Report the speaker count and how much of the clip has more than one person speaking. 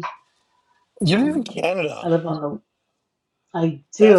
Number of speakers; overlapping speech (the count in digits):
2, about 17%